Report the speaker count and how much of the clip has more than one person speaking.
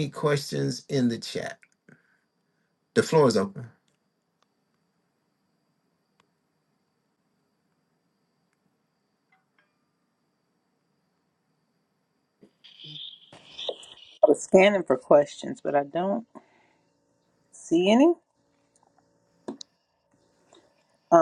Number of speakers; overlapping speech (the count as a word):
two, no overlap